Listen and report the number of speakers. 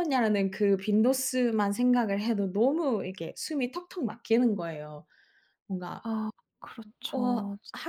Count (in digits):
2